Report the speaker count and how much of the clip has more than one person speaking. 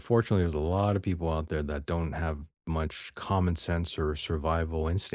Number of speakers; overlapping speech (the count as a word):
one, no overlap